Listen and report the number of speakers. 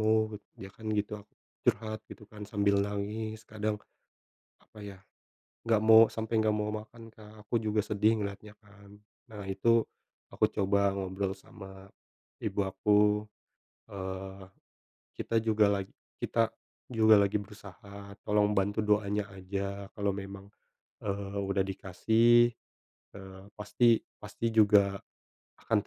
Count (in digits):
1